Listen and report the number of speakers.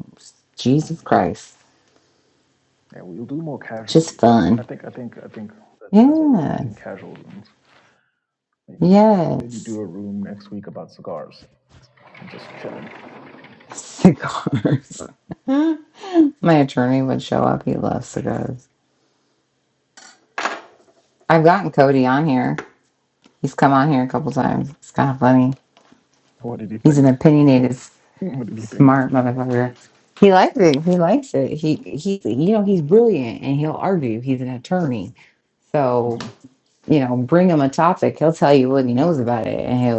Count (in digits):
2